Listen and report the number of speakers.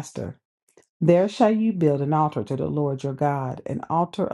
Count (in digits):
1